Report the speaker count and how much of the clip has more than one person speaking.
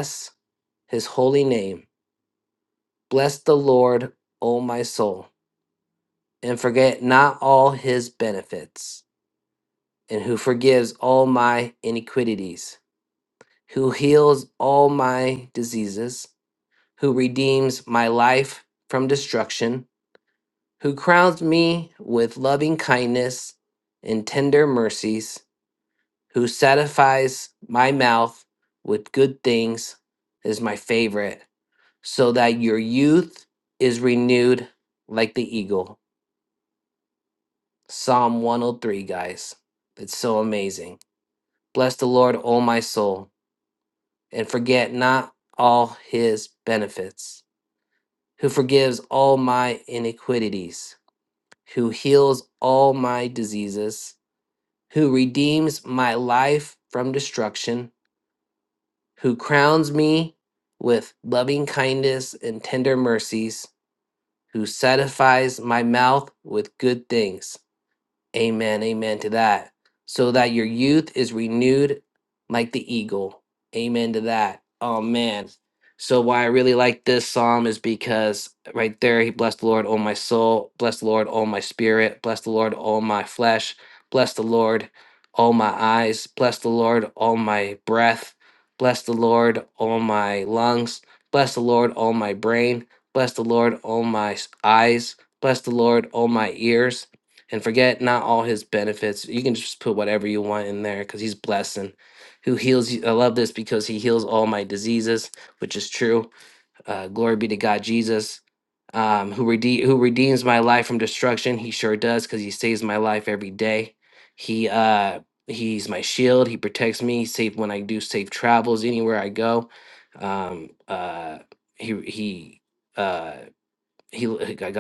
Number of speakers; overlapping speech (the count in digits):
1, no overlap